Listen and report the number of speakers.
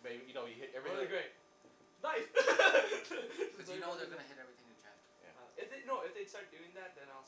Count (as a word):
three